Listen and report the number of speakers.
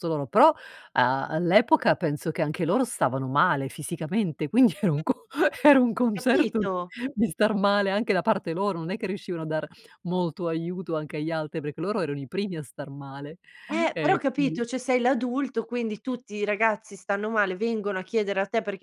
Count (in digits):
2